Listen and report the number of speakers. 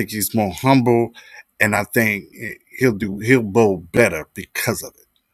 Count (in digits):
1